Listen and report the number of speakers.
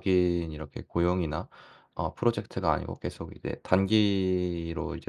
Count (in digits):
1